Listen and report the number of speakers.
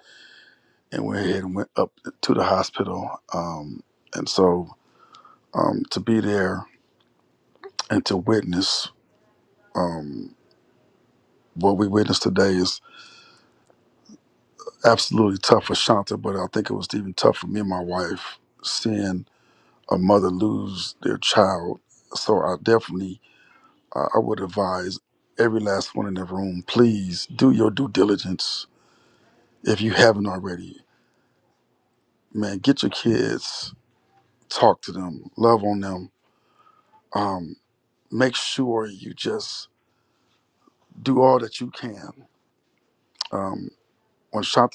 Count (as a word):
one